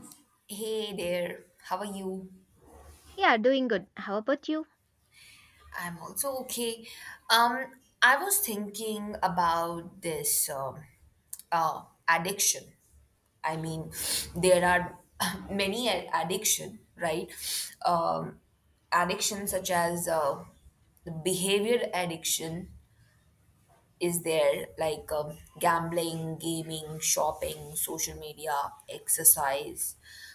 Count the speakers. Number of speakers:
2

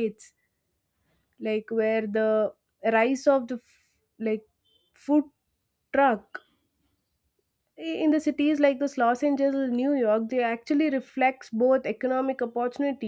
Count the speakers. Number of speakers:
1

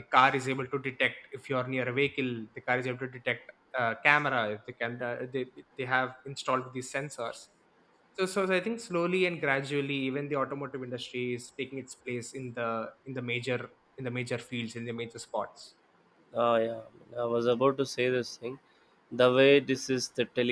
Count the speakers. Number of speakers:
2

